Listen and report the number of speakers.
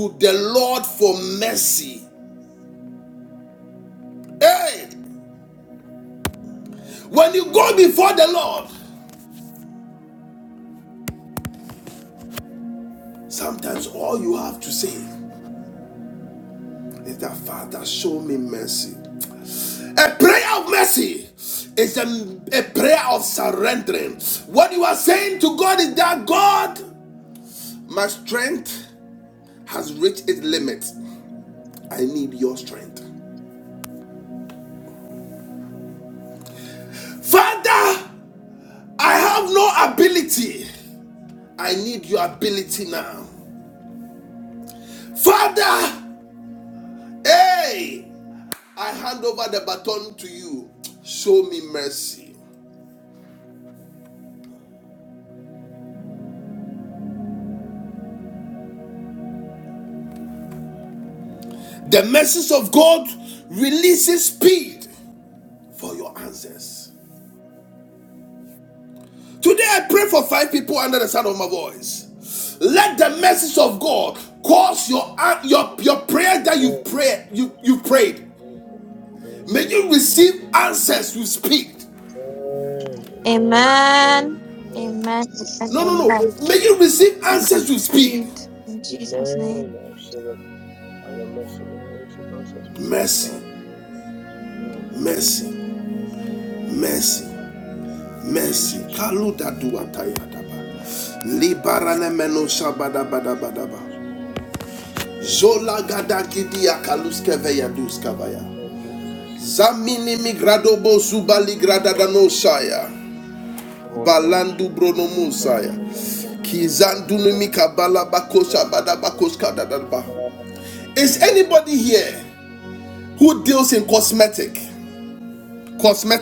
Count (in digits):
3